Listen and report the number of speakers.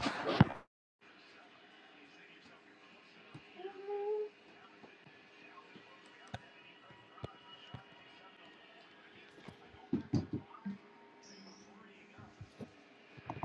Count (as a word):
zero